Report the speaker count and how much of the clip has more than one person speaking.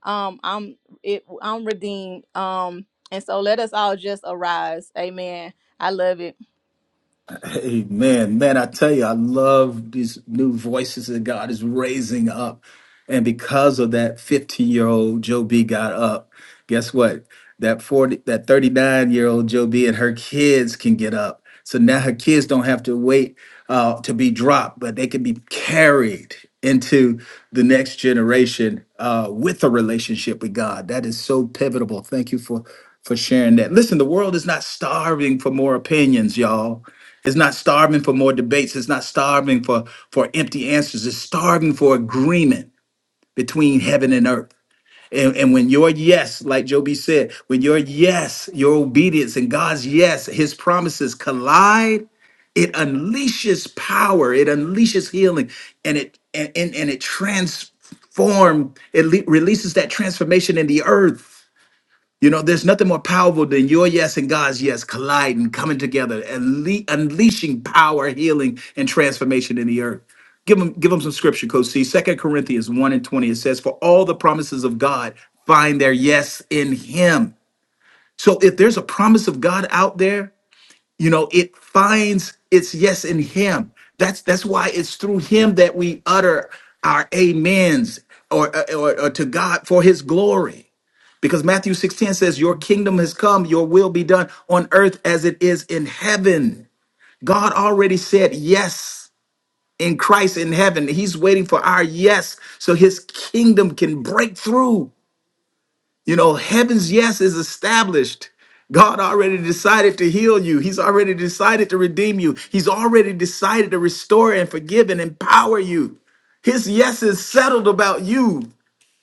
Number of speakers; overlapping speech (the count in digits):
2, no overlap